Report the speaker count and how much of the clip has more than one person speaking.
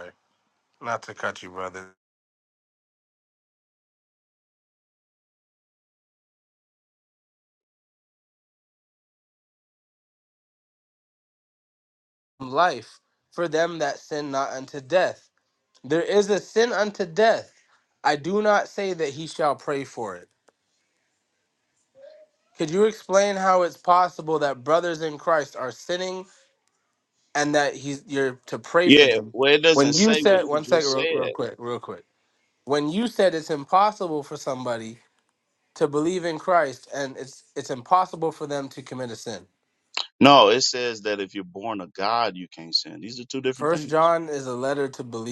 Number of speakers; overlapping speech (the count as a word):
two, about 6%